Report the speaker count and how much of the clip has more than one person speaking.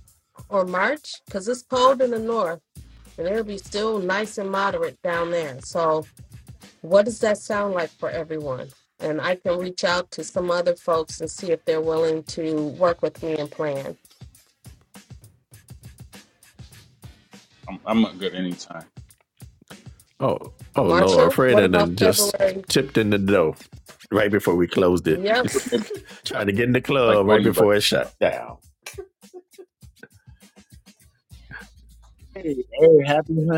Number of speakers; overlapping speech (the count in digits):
4, about 7%